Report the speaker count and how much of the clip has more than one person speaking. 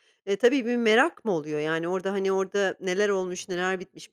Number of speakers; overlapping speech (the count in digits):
1, no overlap